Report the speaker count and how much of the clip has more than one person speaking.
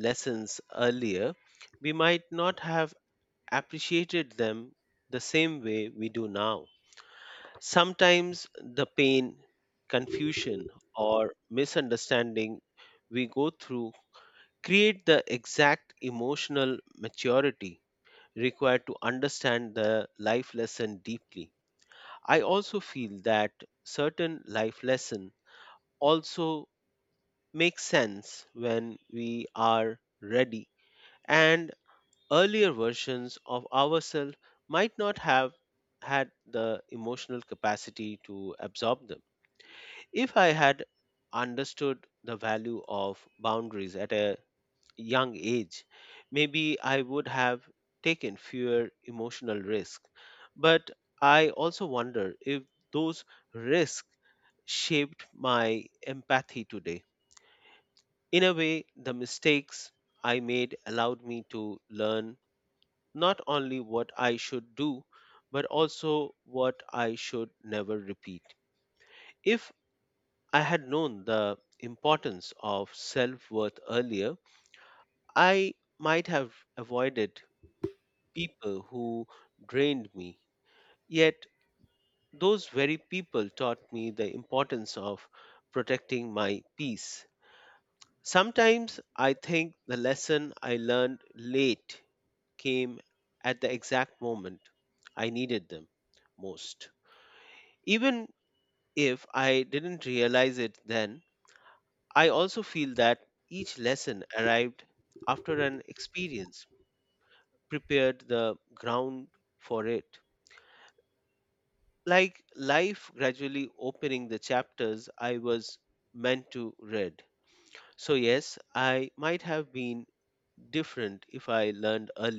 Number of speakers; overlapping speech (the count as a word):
one, no overlap